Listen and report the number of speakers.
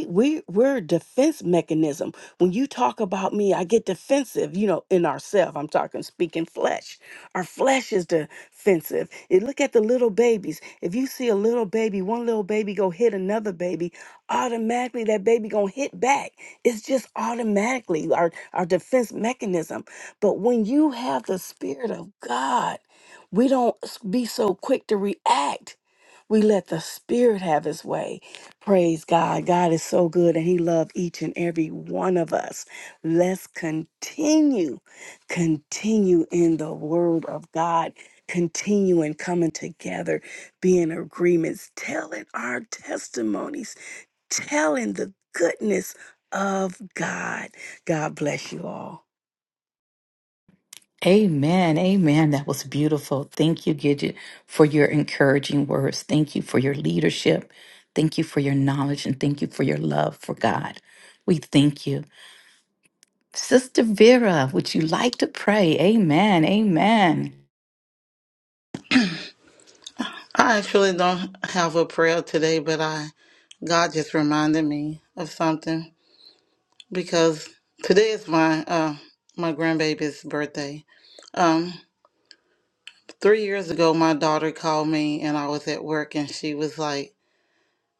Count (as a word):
three